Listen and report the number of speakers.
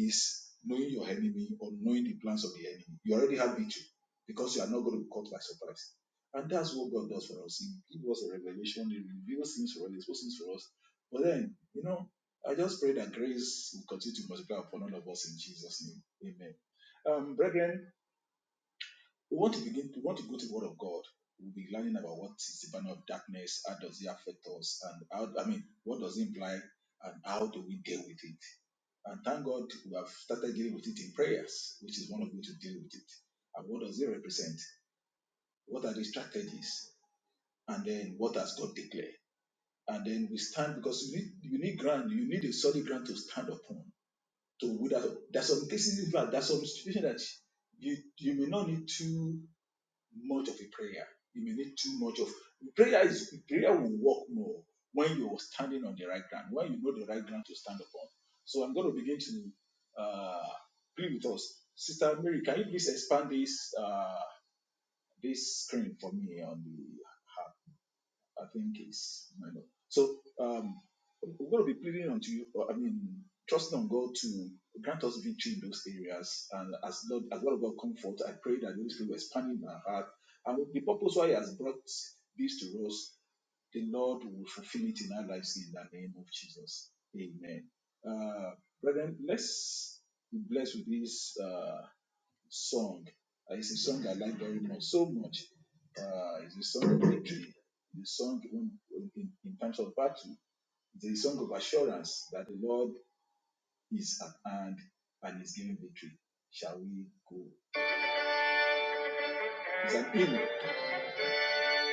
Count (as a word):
one